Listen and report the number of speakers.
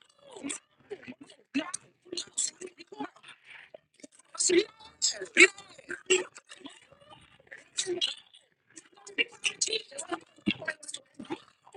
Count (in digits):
0